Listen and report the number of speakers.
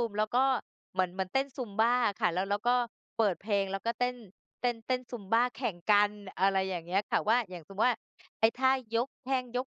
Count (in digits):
1